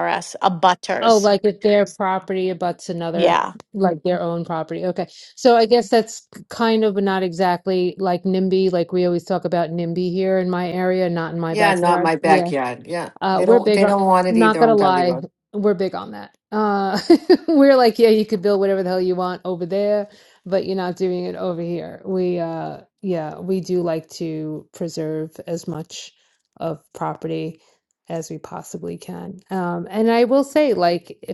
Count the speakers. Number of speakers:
3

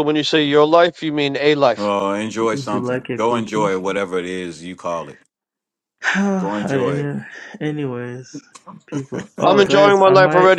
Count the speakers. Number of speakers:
3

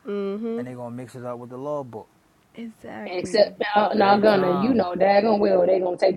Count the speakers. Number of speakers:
3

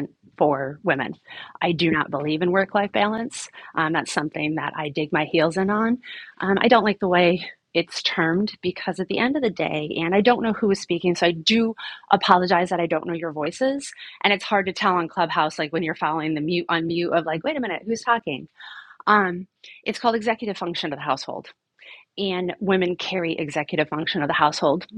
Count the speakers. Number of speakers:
1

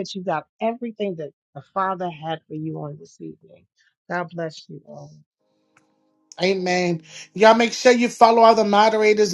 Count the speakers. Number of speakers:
2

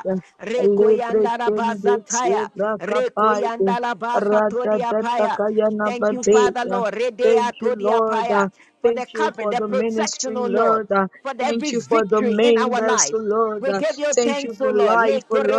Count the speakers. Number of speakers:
2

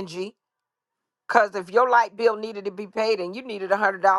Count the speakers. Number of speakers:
1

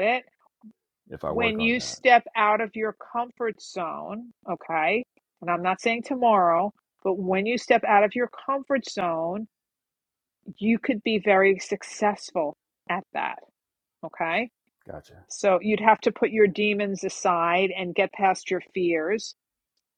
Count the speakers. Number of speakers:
2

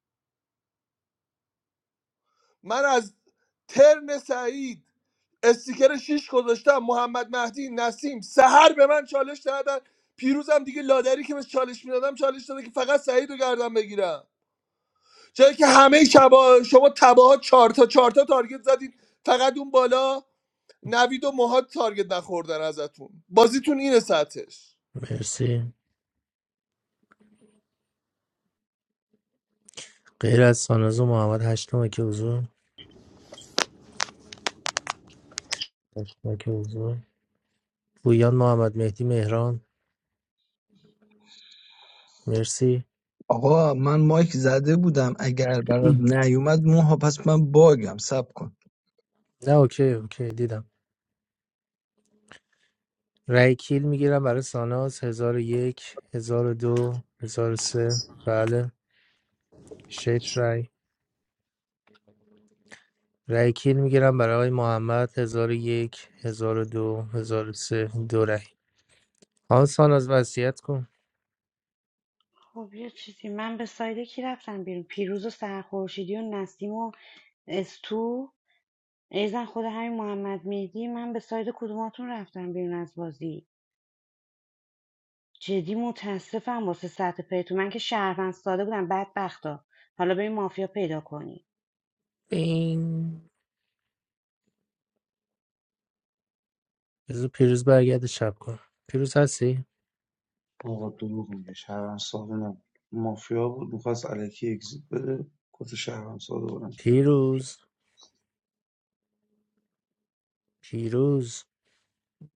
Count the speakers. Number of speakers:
5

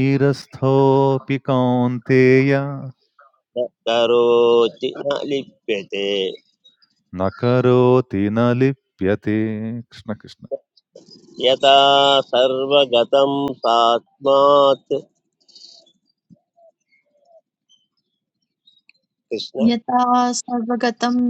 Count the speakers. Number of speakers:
3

